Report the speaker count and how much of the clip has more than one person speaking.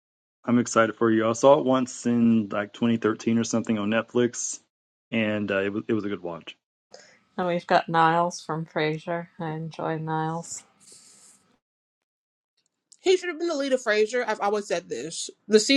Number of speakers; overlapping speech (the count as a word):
three, no overlap